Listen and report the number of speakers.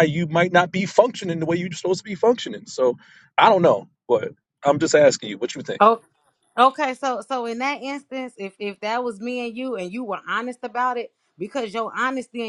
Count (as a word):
two